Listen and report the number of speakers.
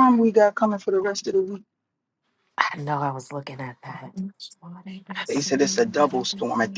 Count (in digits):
3